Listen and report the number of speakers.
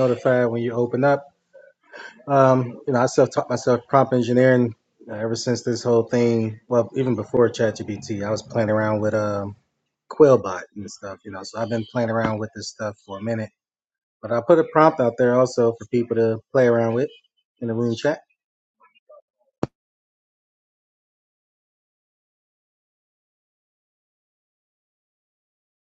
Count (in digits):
1